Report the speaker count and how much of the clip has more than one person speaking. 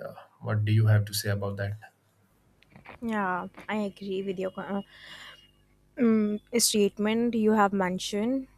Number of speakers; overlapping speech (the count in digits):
2, no overlap